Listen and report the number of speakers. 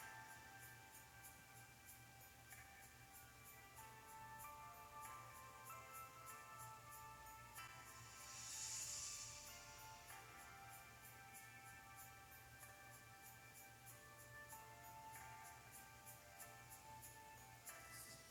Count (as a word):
zero